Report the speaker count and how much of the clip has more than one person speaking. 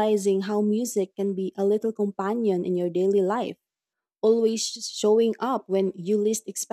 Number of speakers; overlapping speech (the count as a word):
one, no overlap